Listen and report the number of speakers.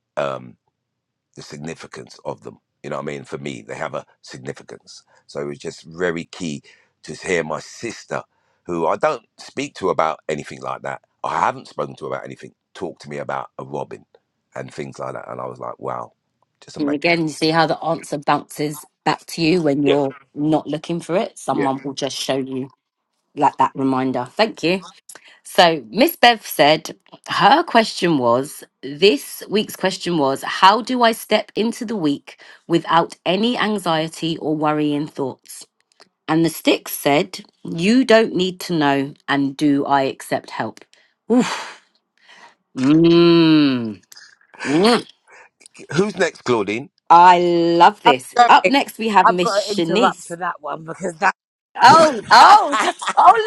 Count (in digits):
3